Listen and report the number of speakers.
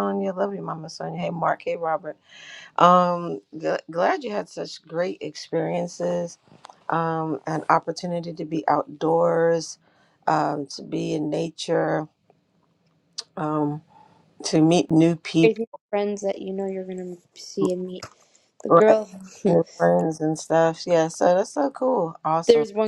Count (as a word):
two